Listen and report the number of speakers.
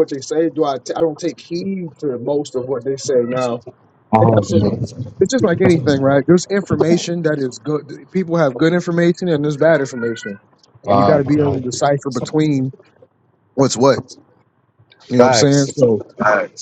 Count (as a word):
two